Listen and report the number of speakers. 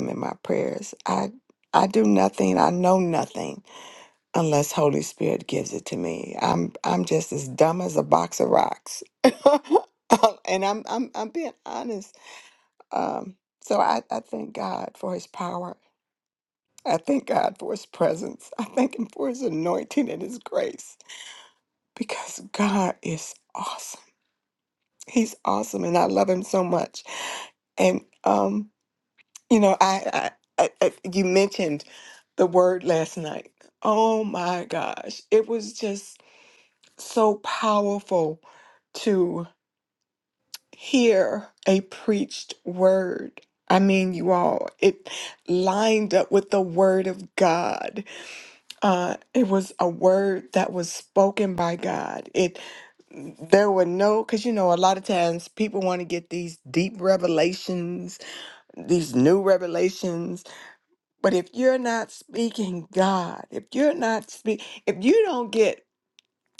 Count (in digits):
1